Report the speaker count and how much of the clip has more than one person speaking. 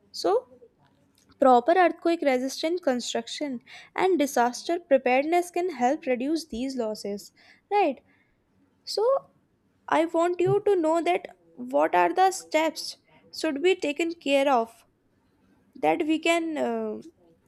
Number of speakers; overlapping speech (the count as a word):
one, no overlap